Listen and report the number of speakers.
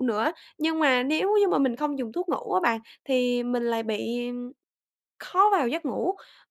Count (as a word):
one